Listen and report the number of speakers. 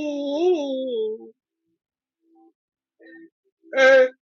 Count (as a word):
one